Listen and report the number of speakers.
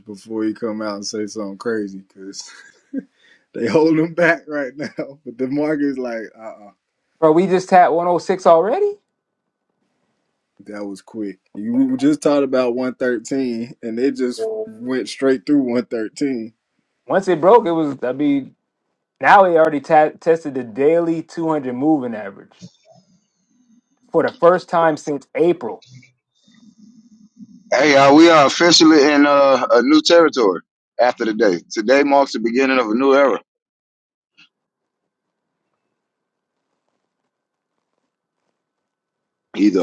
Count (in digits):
3